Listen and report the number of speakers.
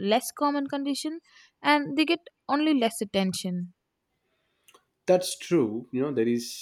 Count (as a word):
two